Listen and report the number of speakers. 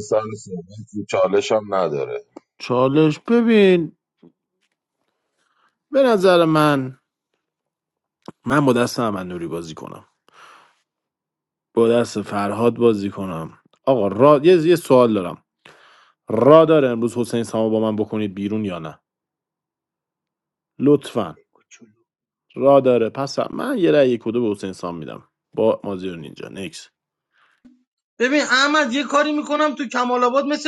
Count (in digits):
3